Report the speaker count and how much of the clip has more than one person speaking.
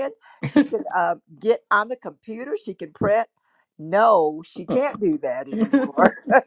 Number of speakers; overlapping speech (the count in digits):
1, no overlap